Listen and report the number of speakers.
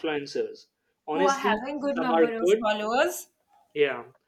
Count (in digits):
2